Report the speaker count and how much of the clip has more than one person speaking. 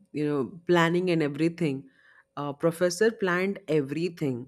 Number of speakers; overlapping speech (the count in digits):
1, no overlap